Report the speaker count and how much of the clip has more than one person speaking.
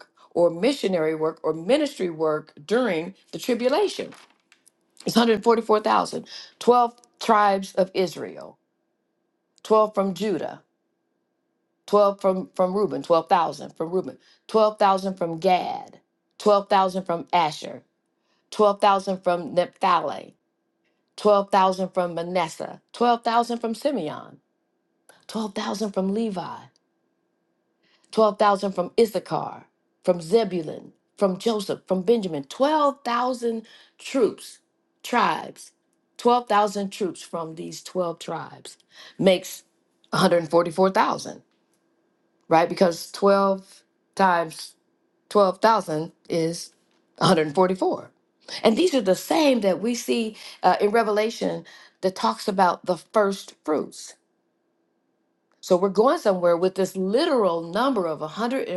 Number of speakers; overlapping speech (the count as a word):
one, no overlap